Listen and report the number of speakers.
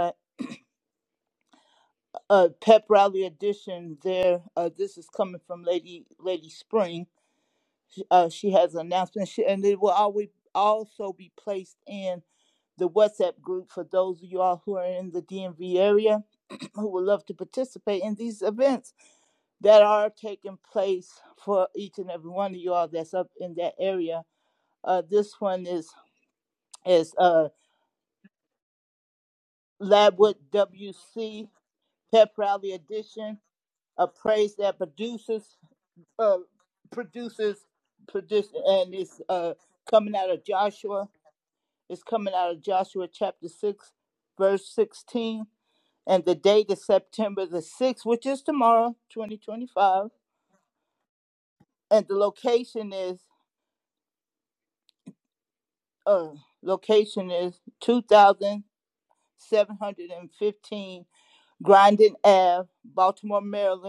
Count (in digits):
1